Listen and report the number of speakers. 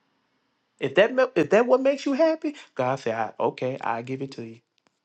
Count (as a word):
one